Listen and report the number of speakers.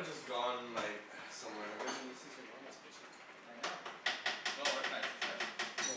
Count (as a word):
three